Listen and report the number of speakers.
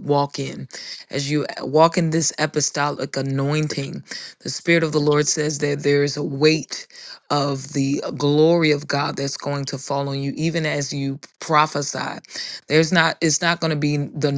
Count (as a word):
one